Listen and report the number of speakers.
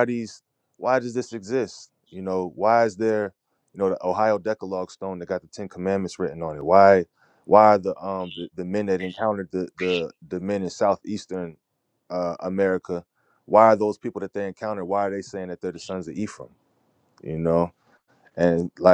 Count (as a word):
one